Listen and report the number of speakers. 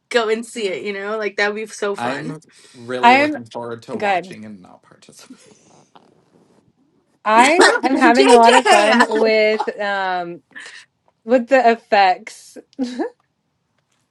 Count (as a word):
three